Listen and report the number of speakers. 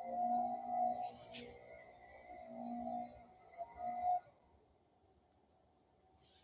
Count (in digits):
0